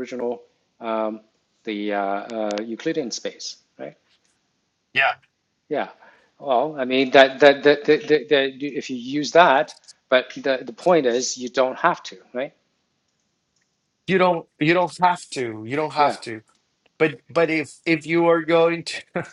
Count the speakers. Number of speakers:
2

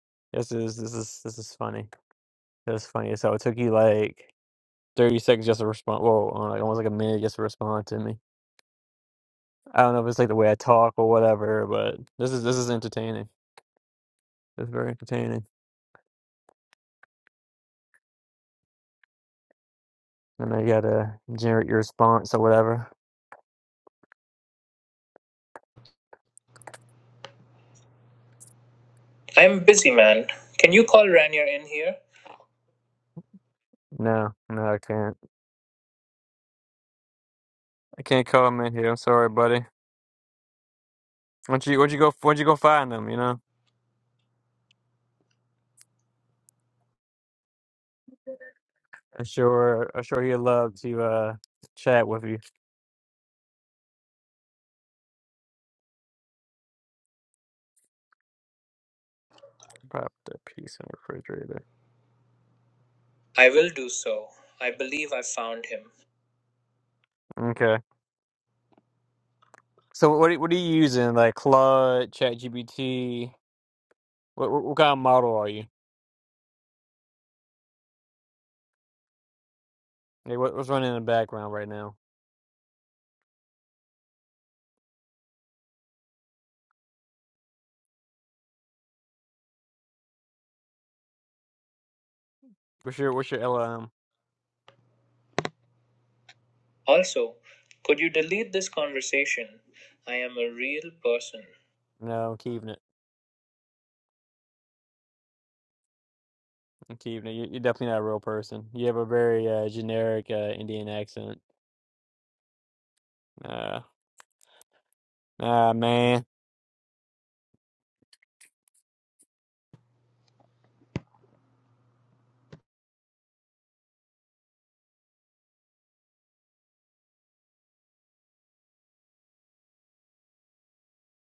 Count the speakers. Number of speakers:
2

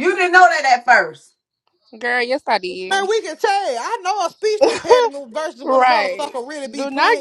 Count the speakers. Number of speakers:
3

